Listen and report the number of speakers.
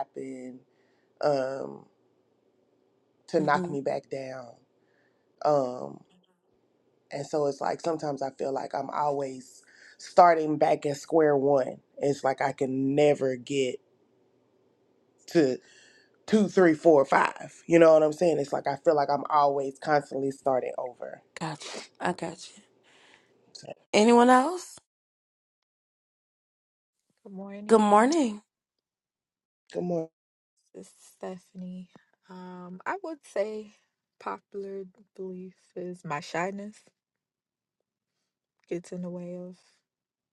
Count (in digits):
3